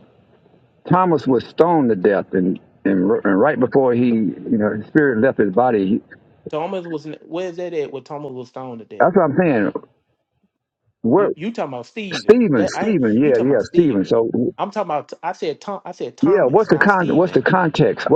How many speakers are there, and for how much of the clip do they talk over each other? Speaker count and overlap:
two, about 19%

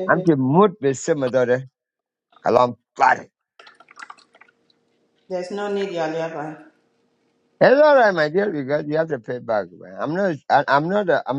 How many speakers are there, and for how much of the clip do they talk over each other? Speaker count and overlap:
two, no overlap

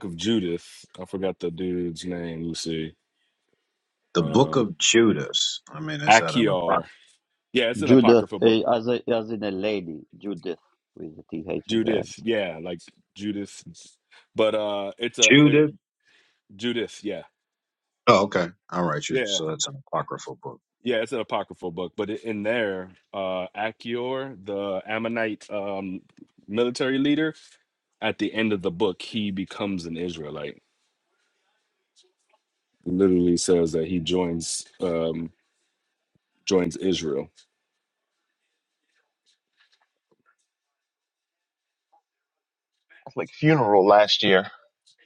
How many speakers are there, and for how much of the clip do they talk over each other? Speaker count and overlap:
four, about 7%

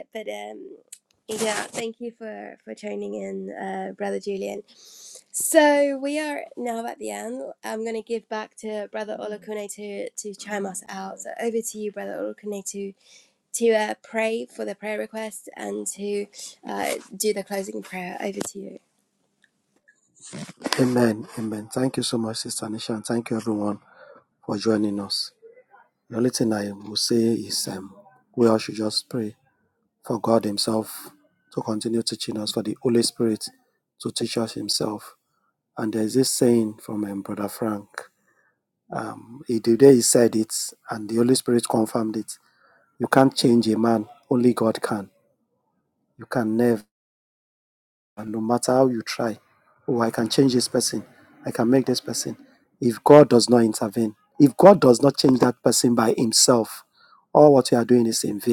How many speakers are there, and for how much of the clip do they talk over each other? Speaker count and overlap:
two, no overlap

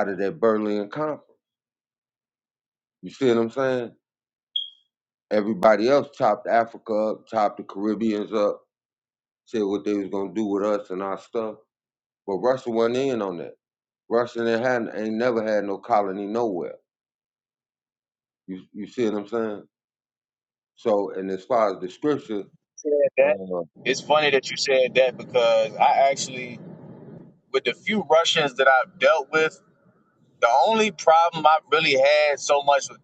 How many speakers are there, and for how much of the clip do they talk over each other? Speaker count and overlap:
two, about 1%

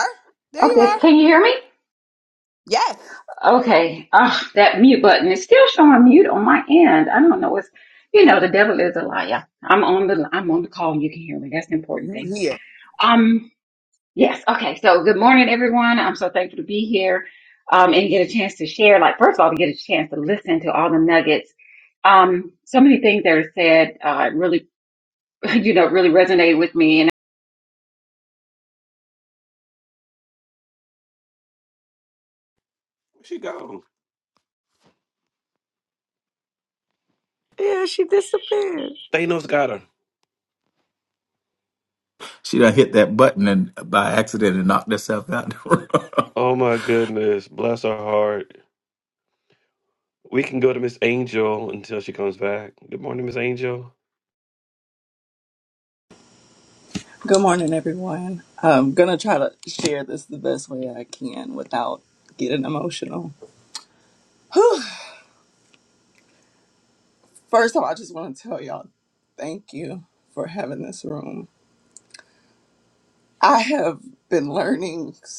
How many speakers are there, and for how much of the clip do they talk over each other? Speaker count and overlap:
six, about 1%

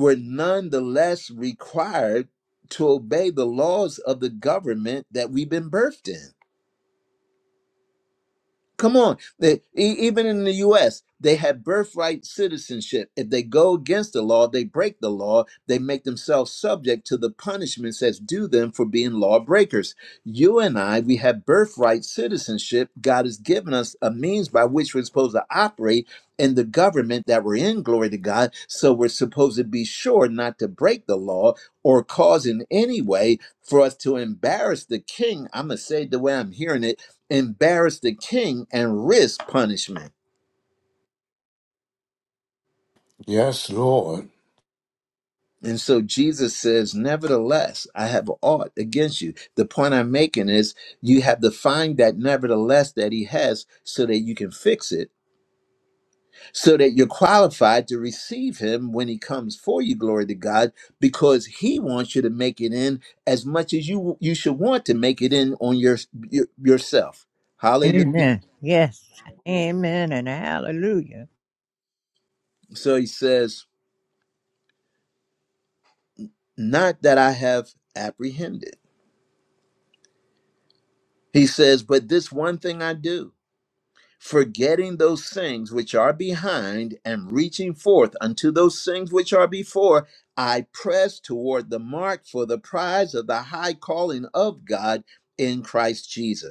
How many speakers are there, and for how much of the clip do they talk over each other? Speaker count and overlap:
three, under 1%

